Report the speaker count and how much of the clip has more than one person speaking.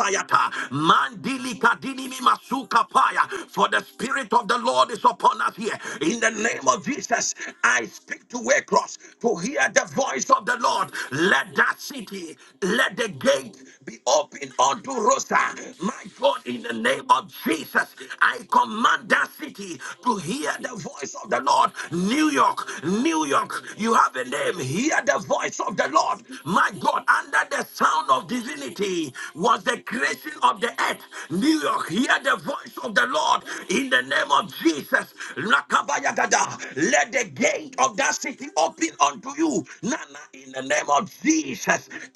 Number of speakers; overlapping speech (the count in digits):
1, no overlap